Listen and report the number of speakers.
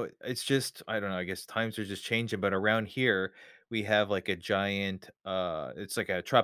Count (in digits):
1